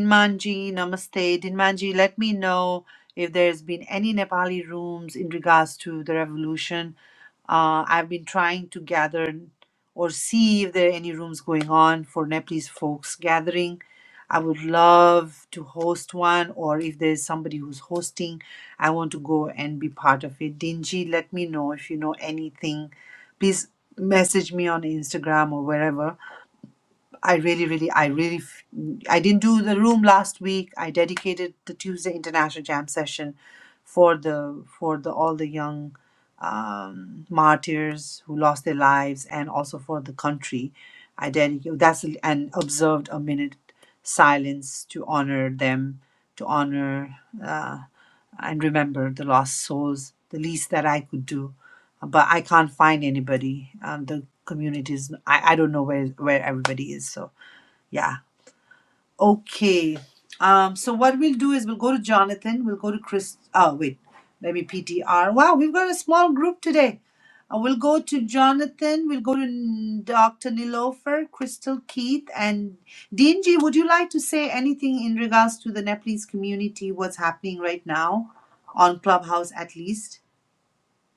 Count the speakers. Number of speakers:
one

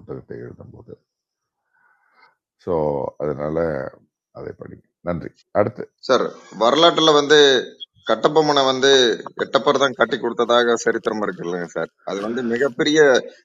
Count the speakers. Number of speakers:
two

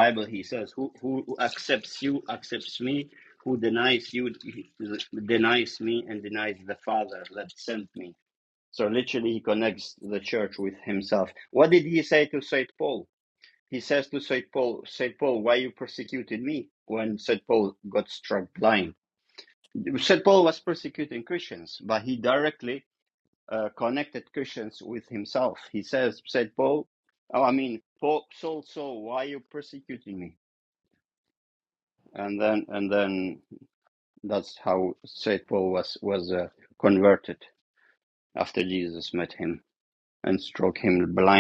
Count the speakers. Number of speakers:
one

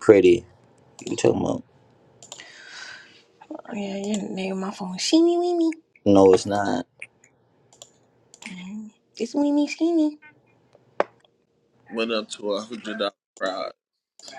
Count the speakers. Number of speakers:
three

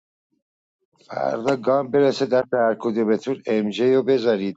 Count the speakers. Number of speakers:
one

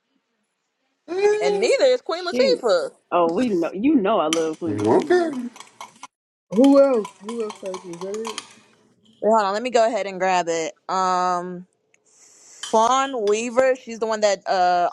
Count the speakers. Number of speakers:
four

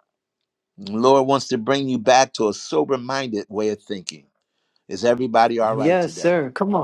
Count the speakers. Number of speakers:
two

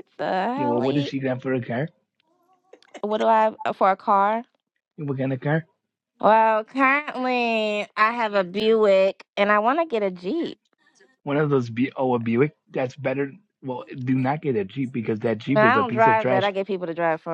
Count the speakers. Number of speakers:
two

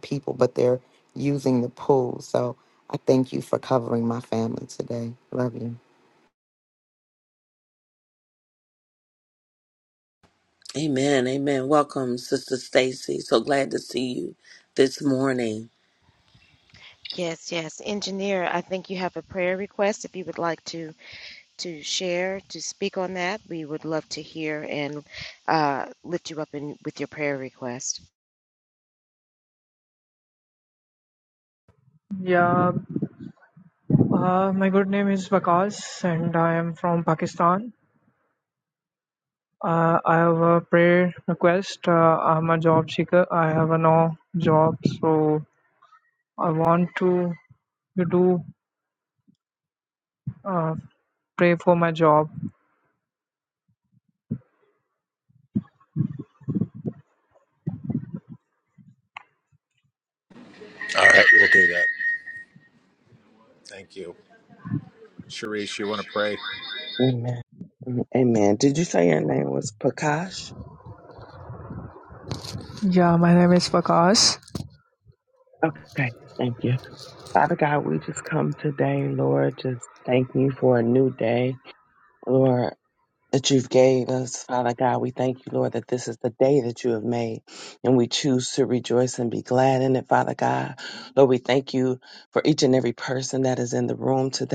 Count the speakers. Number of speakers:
six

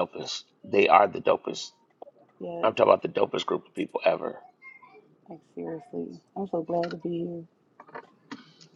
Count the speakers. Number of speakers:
two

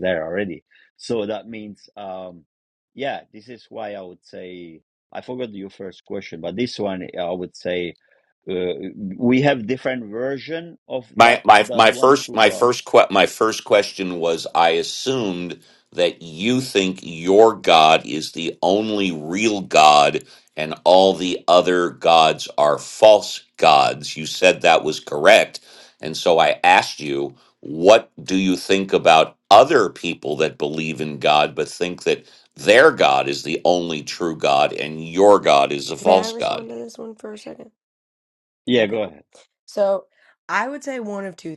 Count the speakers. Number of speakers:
three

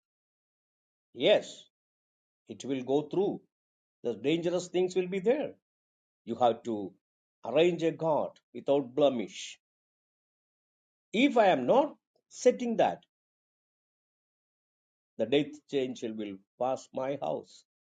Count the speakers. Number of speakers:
one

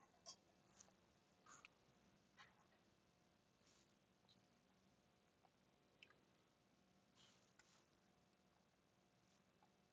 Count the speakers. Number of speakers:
zero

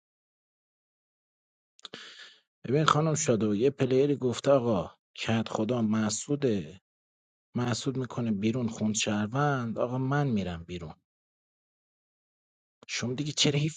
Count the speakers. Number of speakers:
one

